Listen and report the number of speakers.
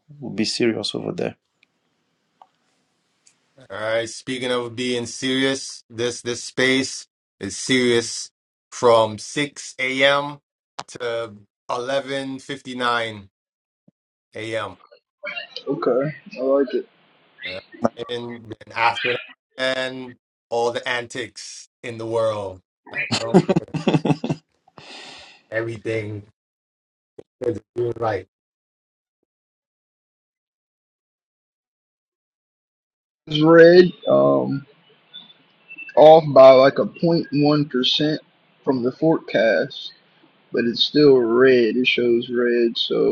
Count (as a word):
three